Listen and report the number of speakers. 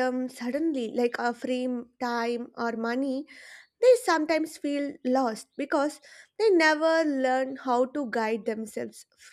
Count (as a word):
one